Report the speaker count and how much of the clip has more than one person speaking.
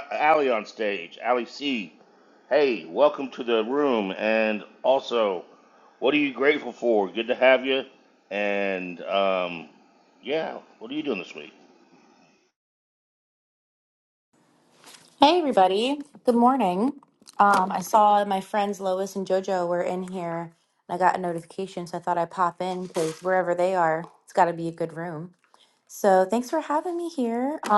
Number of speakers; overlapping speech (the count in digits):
2, no overlap